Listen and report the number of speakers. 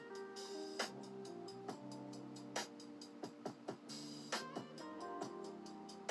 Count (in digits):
0